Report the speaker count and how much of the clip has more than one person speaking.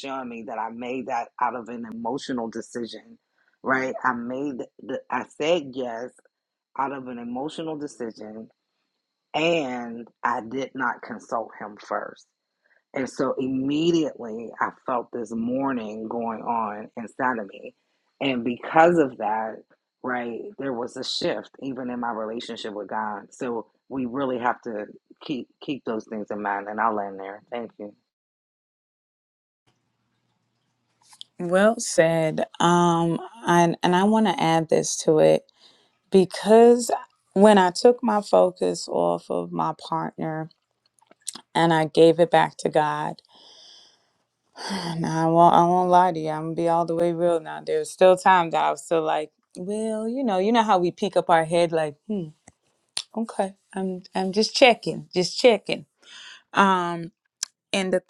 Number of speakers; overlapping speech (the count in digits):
2, no overlap